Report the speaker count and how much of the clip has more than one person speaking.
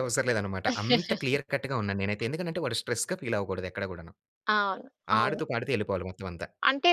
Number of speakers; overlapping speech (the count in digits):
2, about 4%